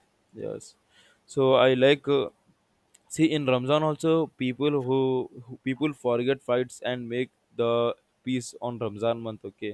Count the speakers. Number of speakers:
1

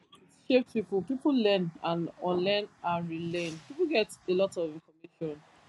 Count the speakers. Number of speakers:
1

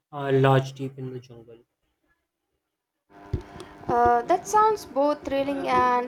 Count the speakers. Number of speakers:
2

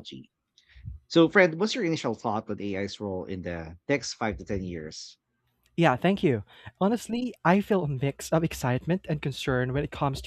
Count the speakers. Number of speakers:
2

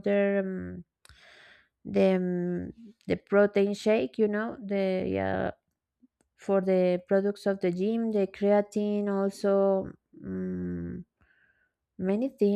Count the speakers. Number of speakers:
1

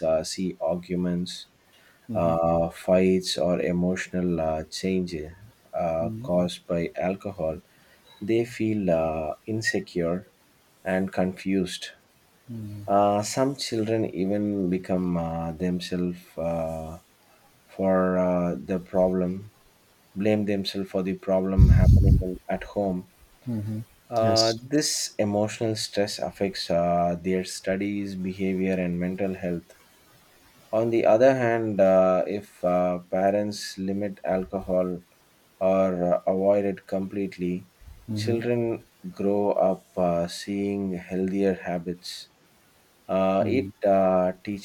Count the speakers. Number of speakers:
2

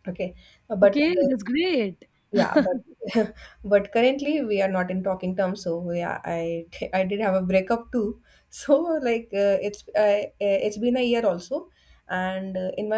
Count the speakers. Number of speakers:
2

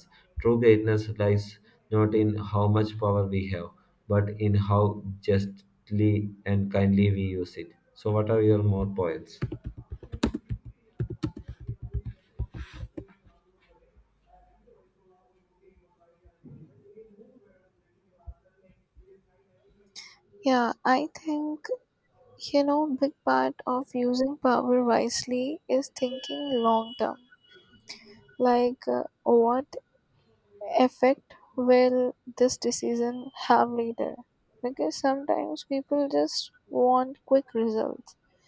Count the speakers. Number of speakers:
2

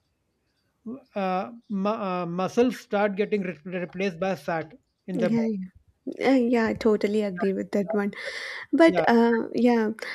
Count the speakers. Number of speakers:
2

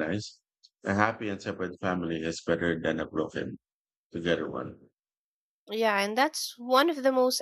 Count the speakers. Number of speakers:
2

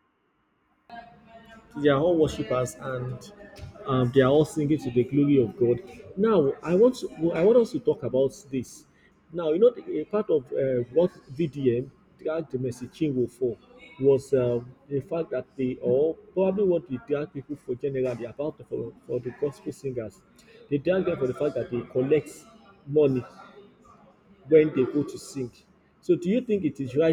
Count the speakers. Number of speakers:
1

